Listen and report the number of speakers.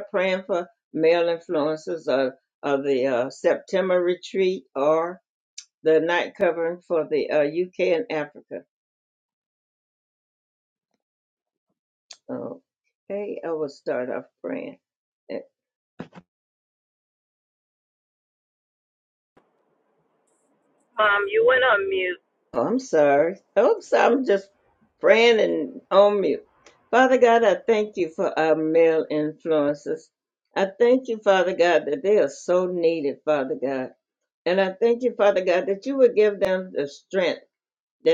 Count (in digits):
2